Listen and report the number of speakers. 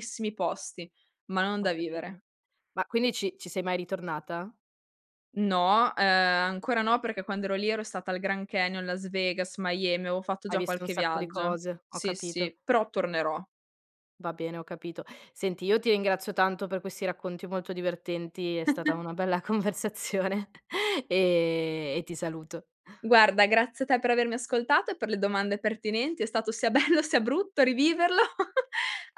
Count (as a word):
two